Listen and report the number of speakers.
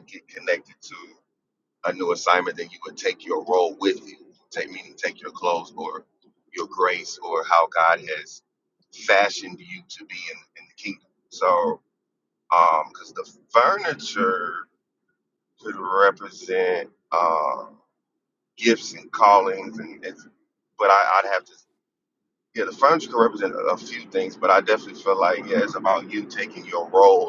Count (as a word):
one